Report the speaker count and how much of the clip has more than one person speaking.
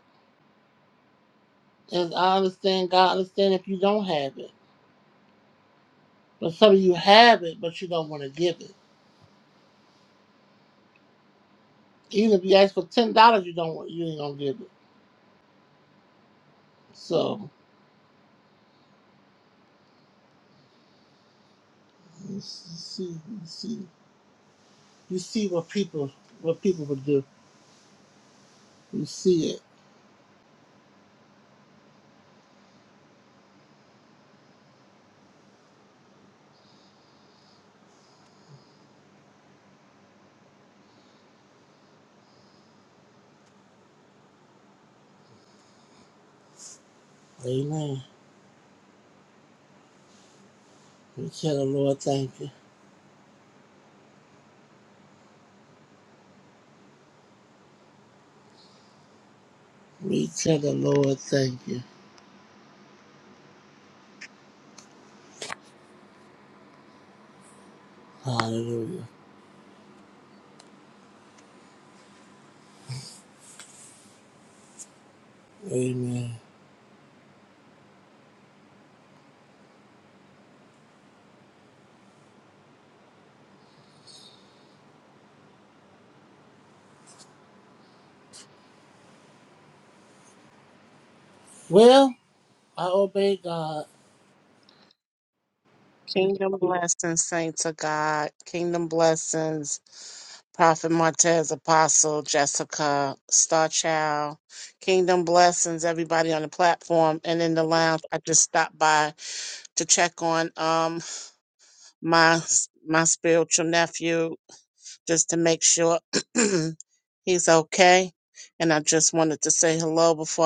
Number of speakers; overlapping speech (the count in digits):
2, no overlap